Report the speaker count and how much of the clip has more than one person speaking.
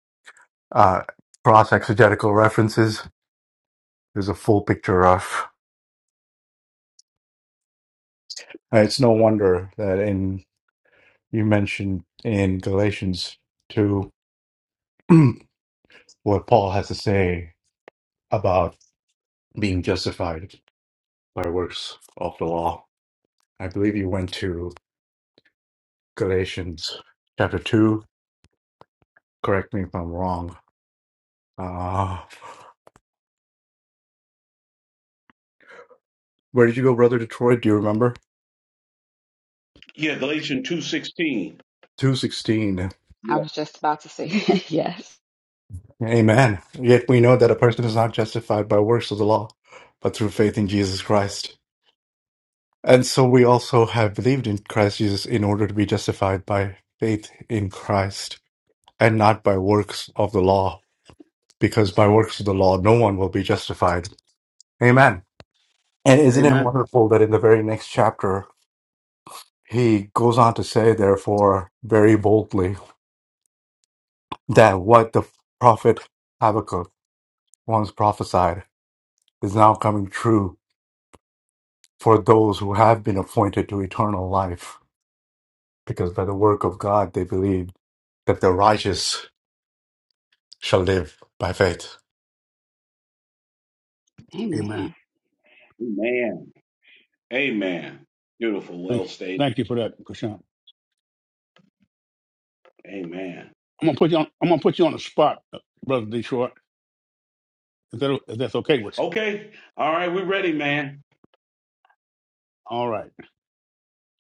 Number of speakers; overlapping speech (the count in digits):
4, about 1%